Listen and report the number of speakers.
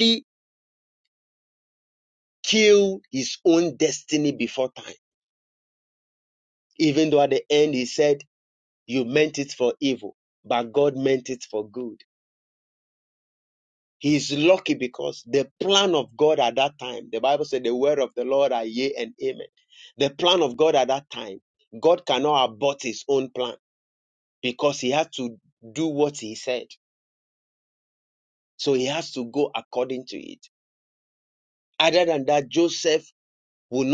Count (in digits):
1